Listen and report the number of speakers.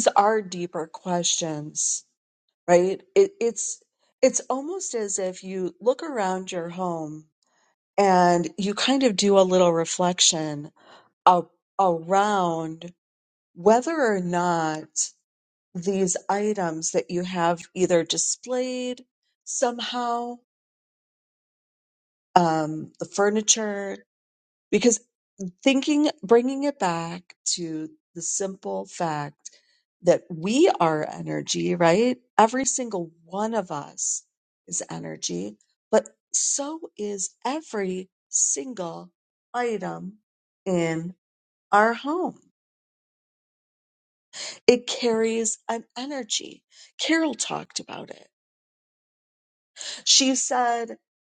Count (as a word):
one